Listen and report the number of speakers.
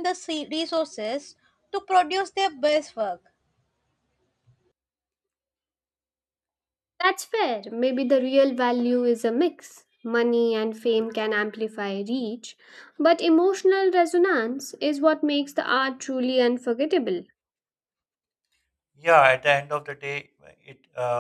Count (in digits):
3